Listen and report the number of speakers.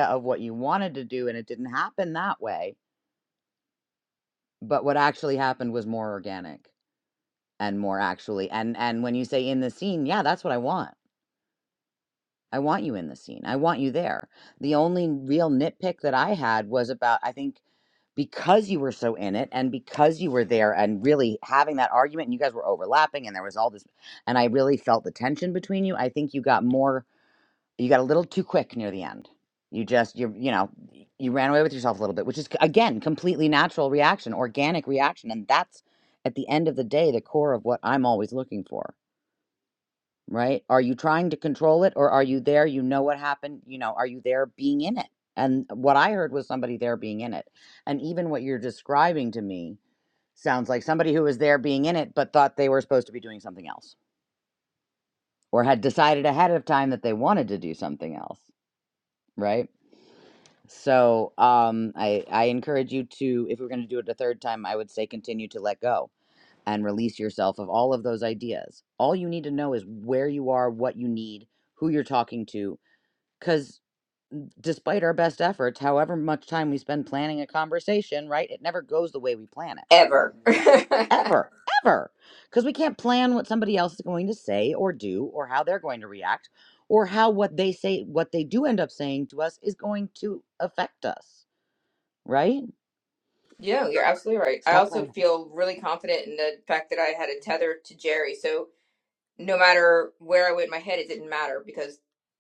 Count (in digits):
2